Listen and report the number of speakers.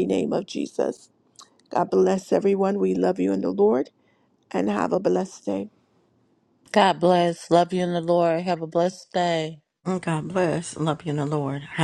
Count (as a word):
three